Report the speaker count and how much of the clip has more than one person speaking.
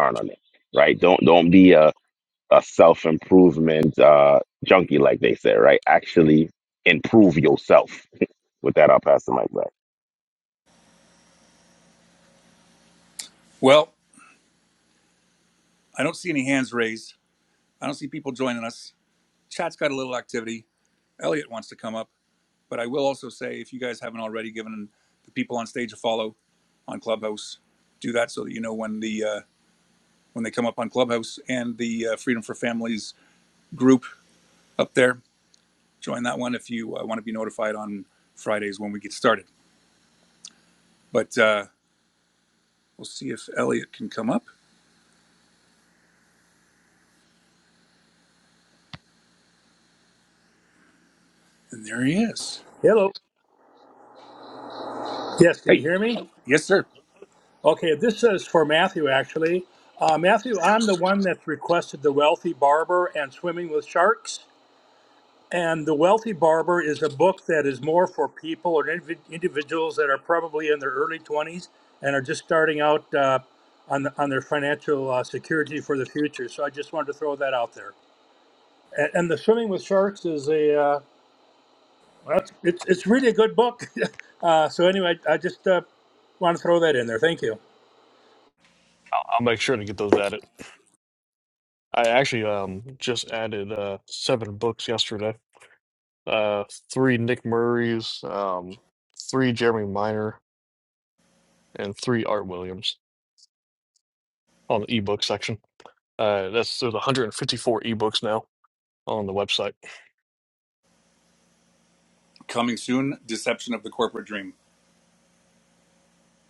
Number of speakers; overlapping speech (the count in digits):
4, under 1%